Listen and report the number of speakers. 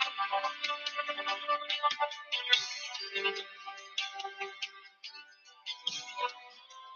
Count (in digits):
0